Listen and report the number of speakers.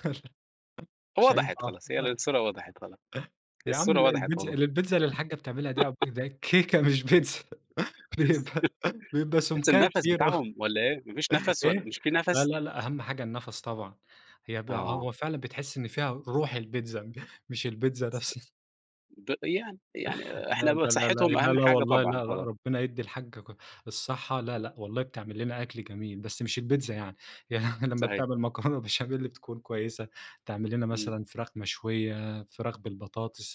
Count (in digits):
2